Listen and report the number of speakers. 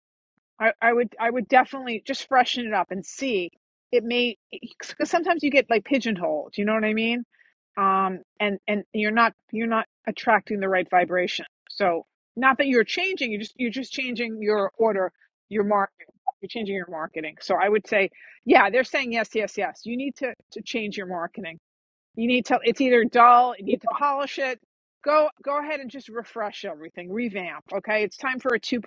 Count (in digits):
1